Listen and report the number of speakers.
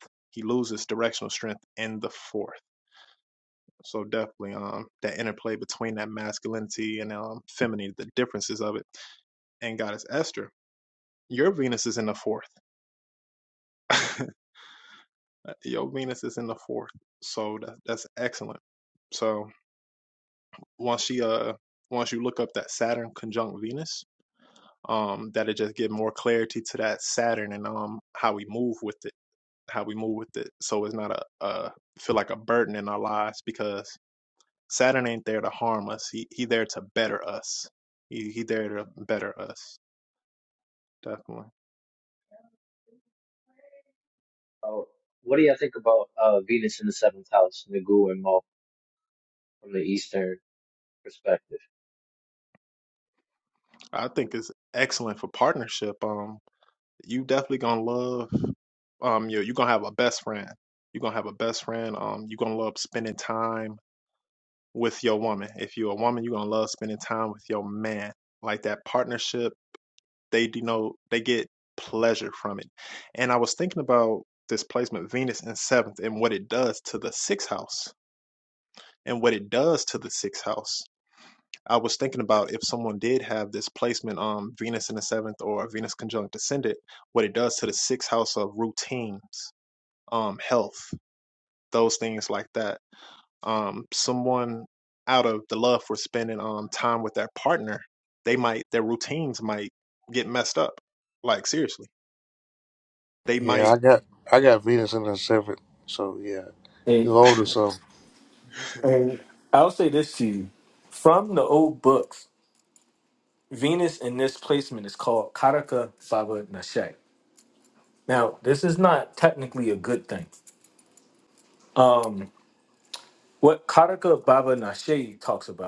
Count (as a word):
four